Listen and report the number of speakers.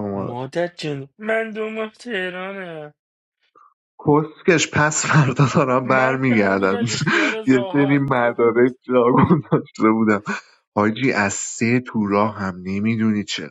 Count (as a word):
two